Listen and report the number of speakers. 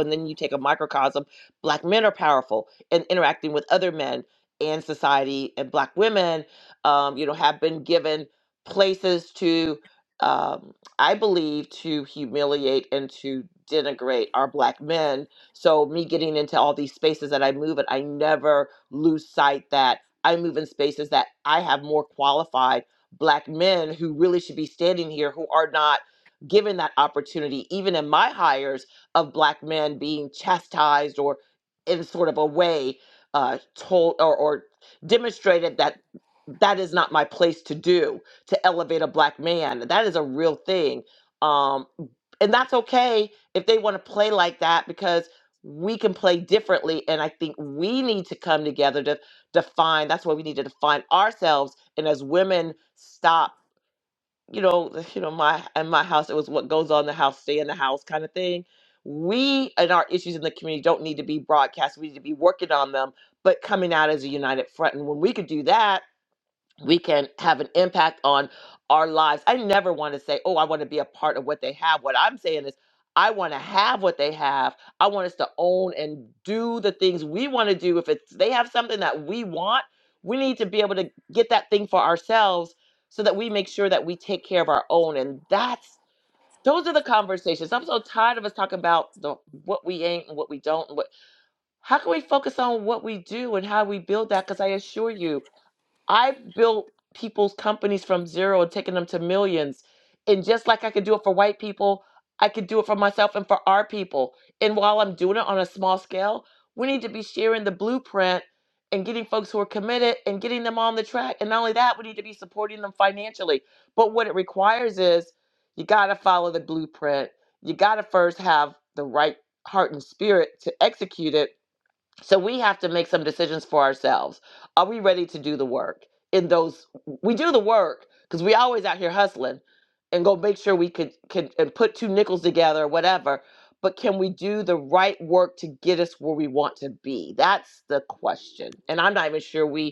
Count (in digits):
1